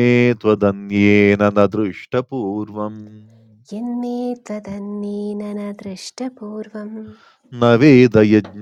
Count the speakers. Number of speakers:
2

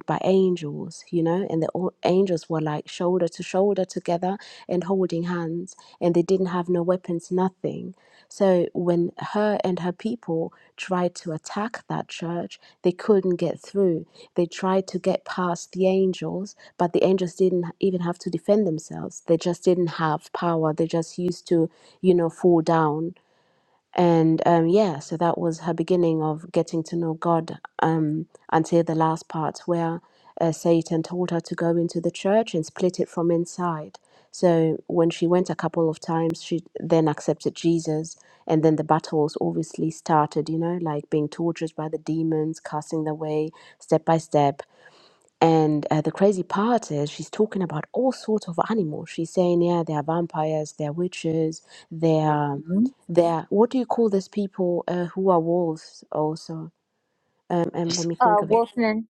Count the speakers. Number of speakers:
2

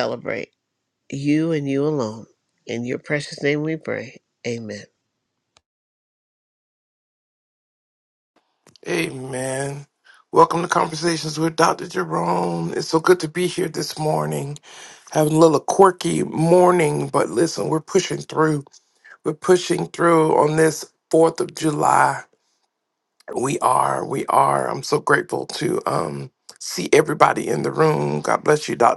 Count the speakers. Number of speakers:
2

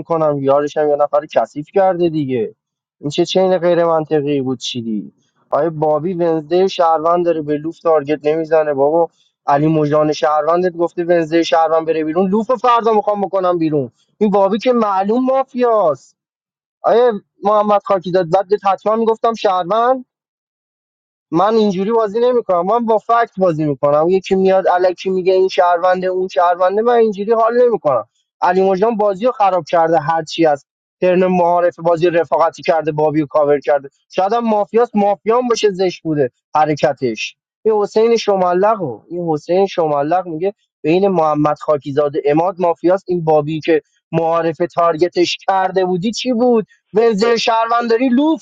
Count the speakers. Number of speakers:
1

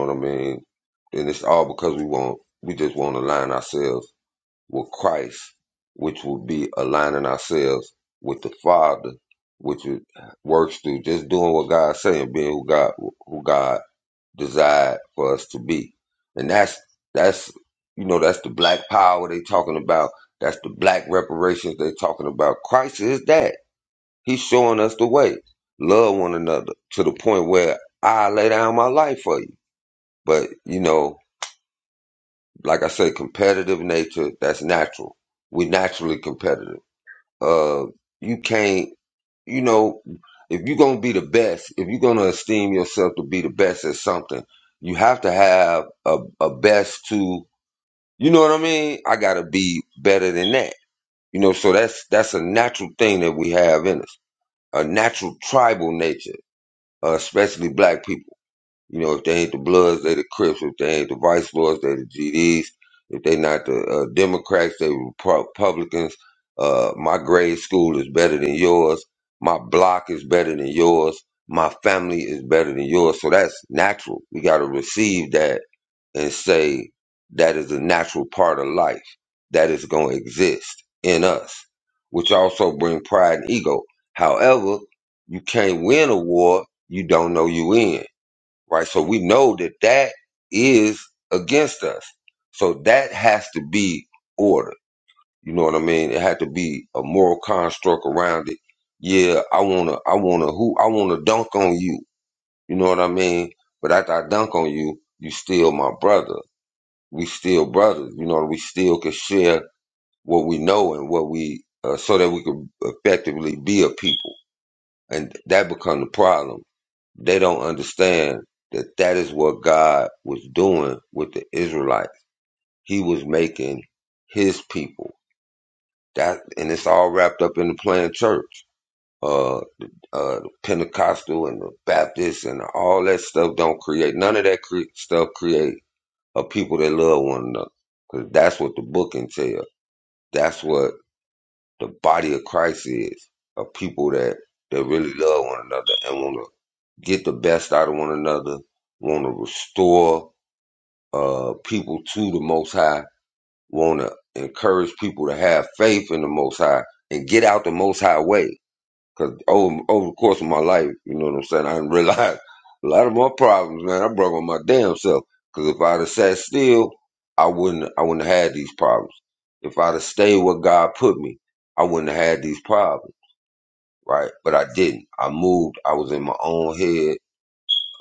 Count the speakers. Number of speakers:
1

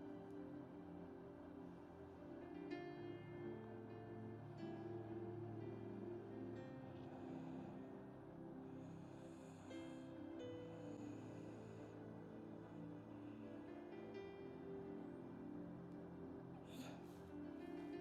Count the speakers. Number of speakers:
0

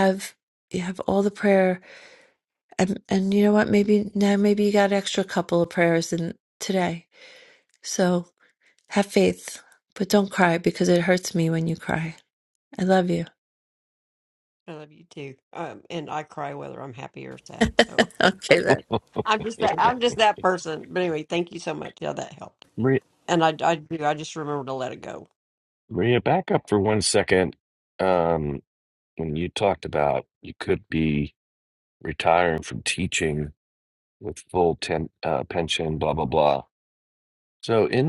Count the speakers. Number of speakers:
3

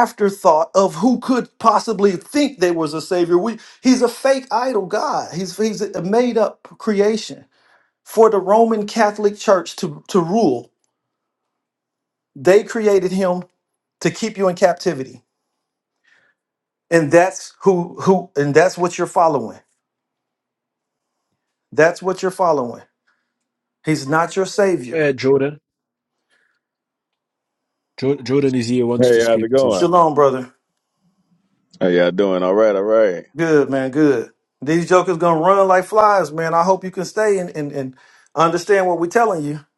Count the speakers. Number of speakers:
3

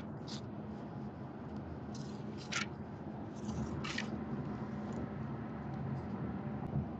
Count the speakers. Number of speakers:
0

